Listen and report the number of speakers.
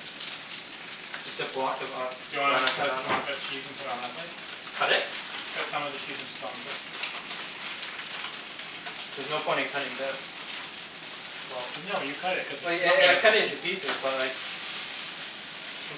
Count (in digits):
2